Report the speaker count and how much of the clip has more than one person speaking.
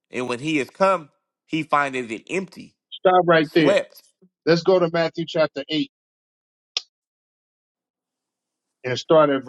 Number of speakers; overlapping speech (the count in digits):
2, about 2%